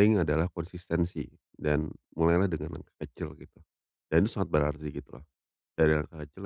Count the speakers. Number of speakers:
1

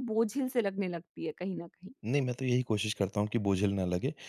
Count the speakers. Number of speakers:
2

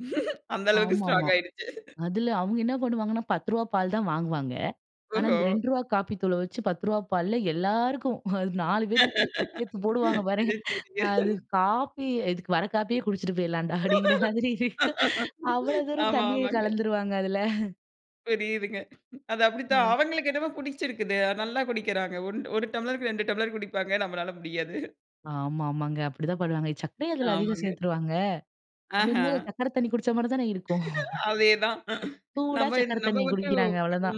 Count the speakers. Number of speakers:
2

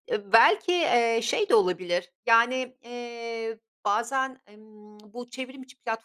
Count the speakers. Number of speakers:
1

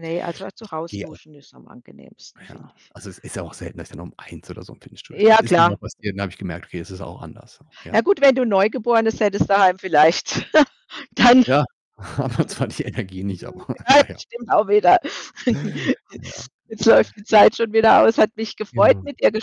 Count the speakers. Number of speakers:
2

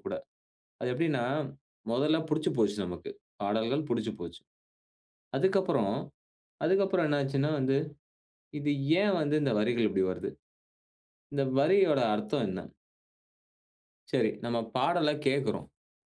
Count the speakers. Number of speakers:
1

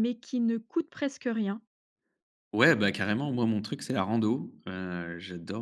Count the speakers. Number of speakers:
2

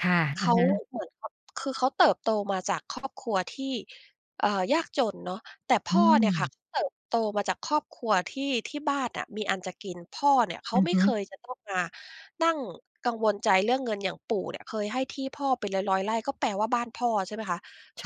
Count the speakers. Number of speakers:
2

